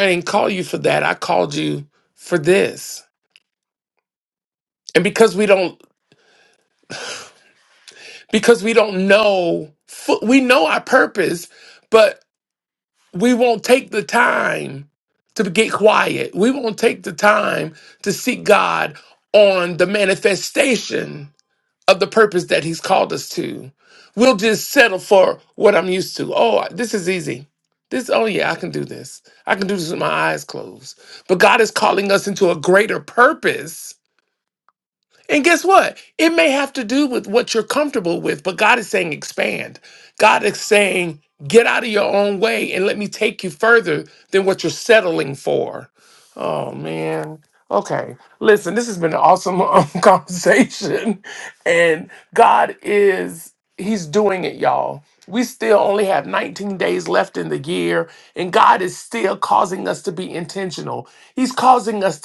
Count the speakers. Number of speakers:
1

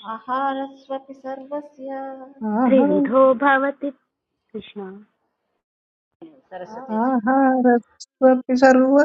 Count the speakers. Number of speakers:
3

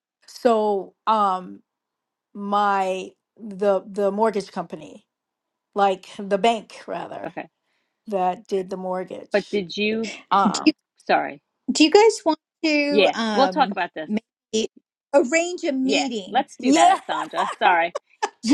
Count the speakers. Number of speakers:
3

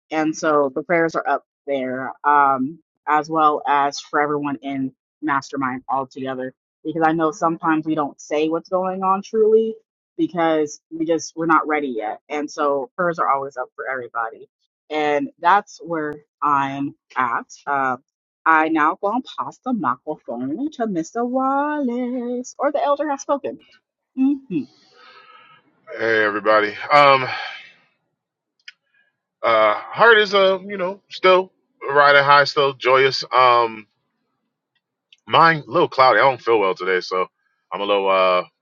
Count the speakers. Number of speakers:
2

